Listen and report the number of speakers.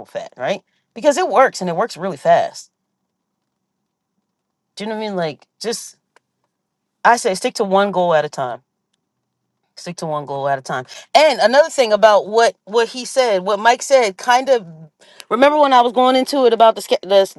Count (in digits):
1